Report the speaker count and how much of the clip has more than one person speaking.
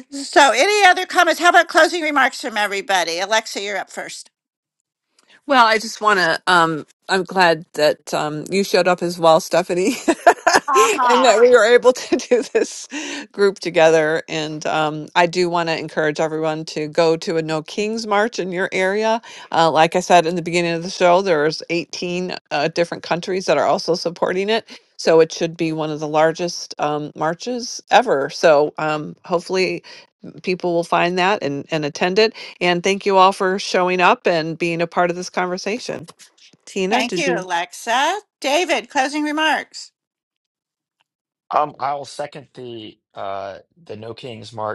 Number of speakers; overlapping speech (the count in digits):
3, about 1%